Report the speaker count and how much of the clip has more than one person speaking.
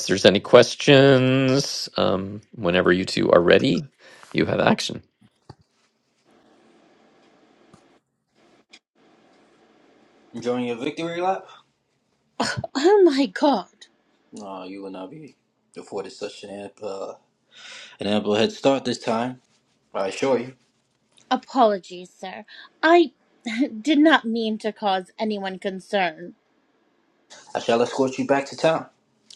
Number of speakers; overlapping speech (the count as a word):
three, no overlap